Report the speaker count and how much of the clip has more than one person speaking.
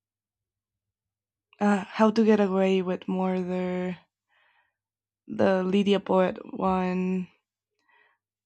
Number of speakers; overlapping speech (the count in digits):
1, no overlap